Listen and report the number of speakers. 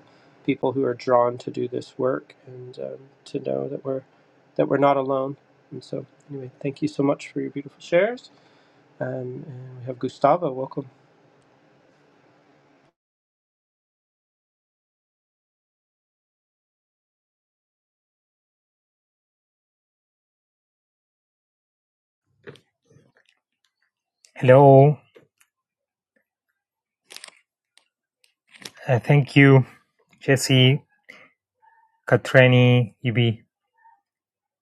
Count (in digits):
2